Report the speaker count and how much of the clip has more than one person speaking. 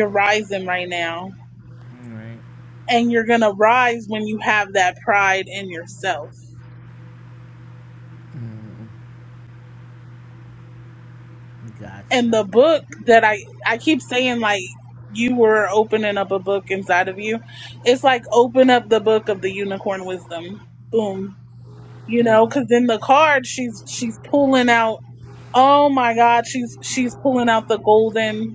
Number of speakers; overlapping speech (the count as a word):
two, about 1%